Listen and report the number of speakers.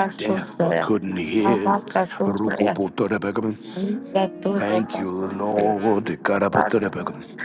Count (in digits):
2